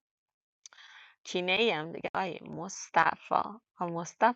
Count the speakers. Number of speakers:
1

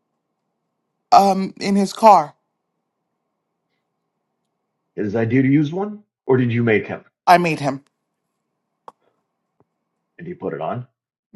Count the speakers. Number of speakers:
2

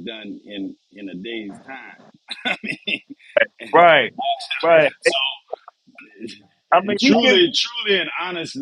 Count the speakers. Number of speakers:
2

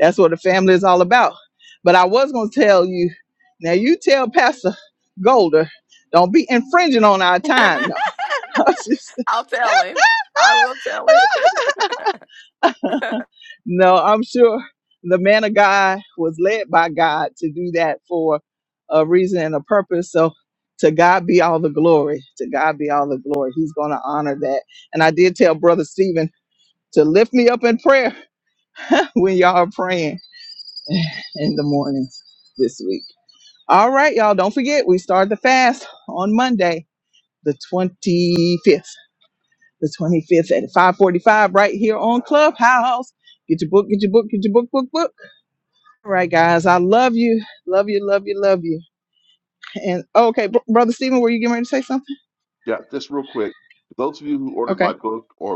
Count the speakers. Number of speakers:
3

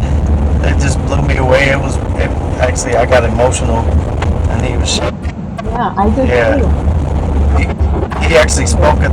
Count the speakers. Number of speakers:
2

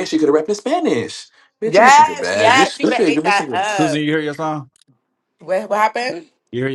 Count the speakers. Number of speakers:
3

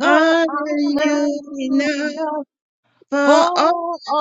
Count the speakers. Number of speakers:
2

